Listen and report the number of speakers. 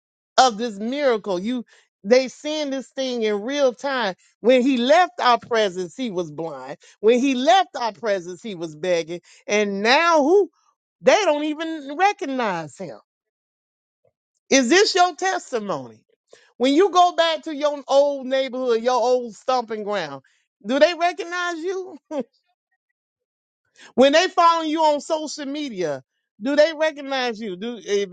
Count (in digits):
1